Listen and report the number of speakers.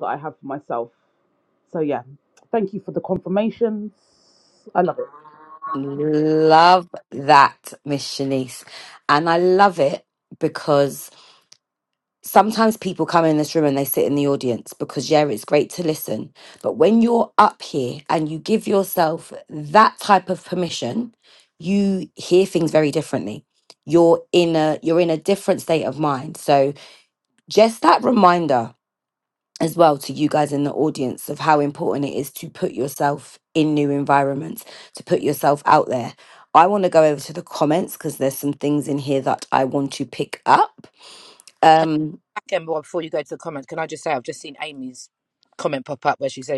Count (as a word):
three